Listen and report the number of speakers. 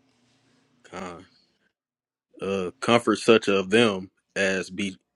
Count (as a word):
one